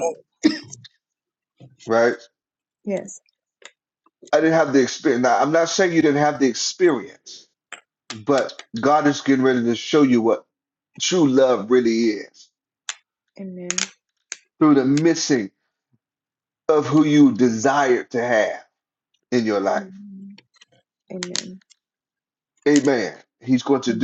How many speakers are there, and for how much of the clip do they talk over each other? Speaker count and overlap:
2, about 1%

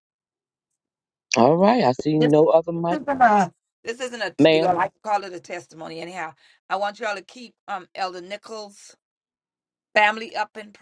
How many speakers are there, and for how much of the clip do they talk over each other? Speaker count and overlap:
2, about 5%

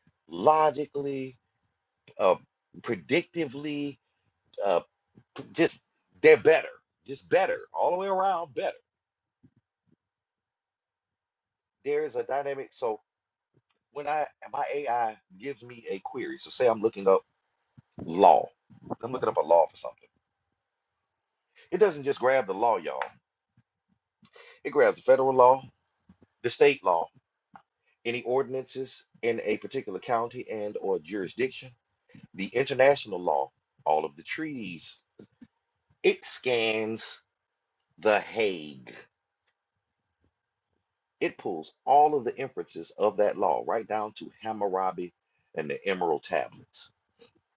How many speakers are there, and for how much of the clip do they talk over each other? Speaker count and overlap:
1, no overlap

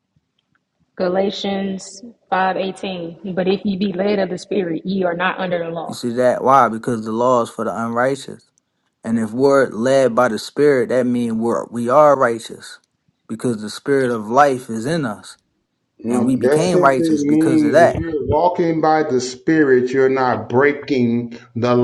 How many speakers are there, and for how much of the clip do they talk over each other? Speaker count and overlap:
3, about 9%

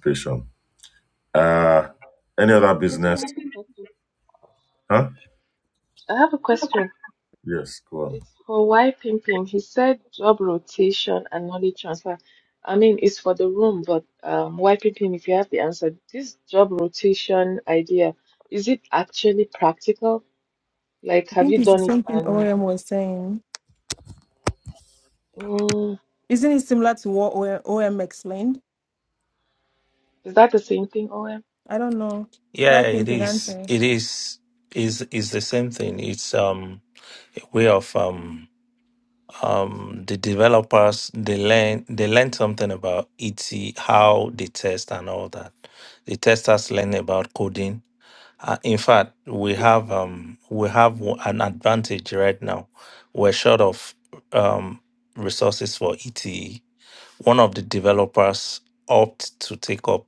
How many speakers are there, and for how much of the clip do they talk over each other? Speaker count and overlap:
4, about 4%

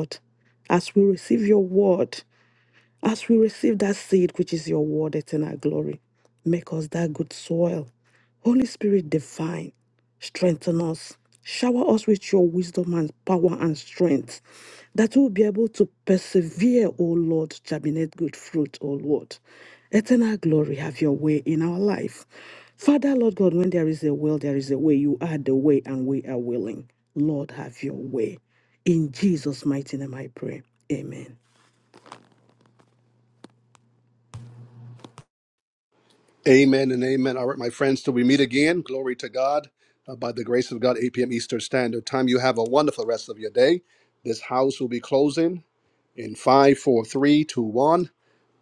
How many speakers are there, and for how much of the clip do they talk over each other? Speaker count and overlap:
2, no overlap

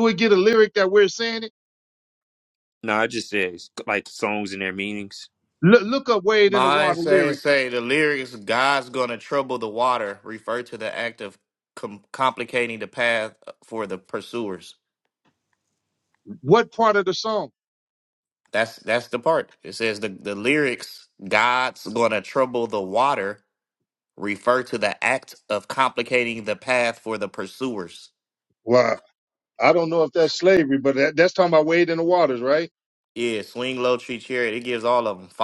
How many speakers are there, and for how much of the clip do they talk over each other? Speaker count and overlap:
3, about 2%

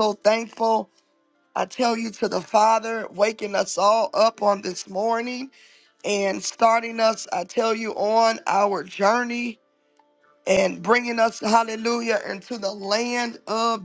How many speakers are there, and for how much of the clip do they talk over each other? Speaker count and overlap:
1, no overlap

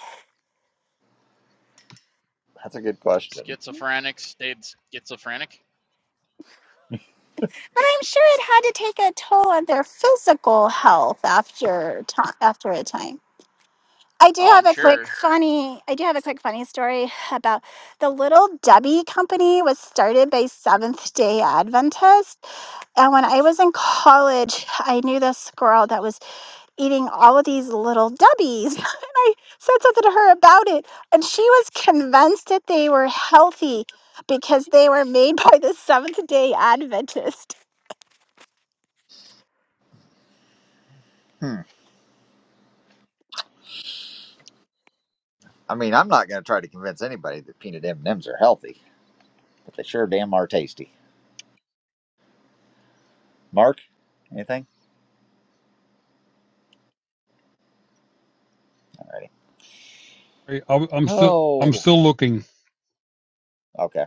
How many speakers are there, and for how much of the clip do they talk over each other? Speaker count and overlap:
4, about 2%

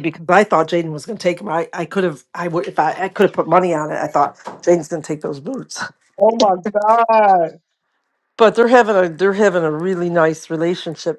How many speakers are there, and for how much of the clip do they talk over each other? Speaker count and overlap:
2, no overlap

